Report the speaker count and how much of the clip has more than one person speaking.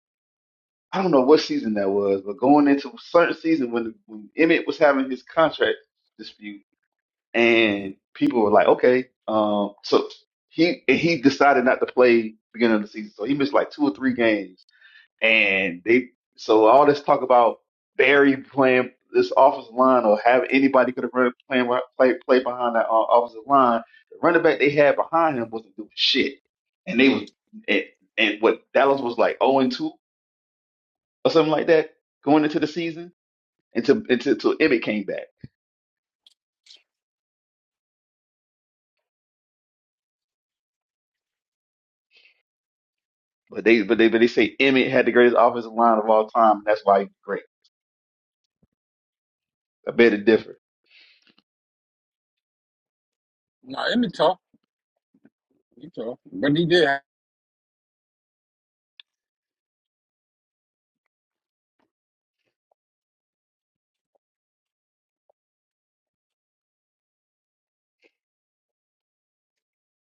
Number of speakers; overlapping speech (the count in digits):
2, no overlap